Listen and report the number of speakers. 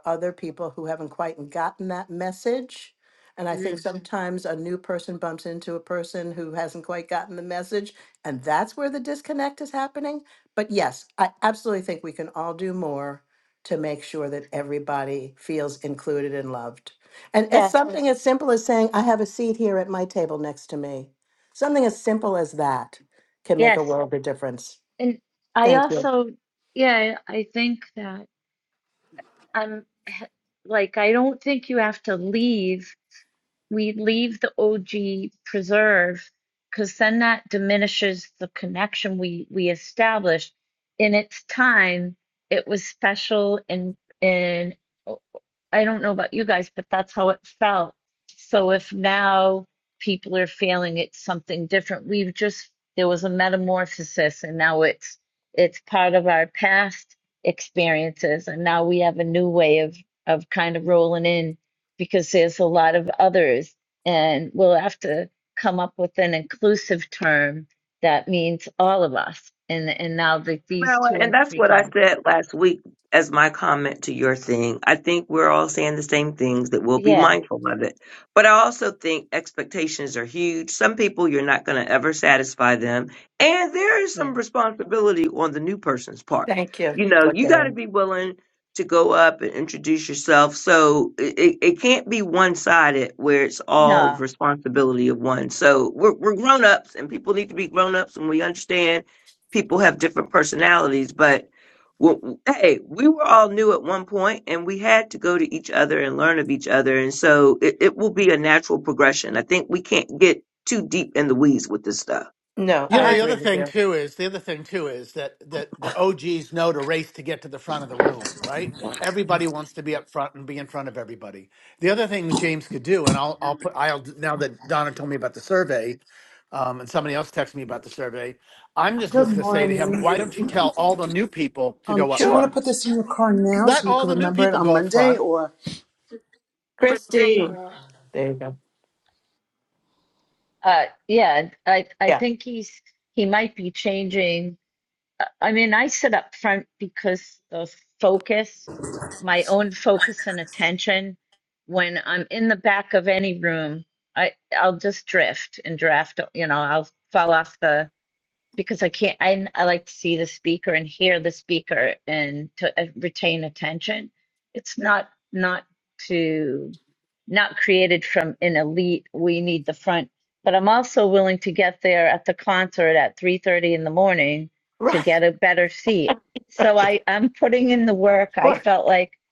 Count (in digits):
5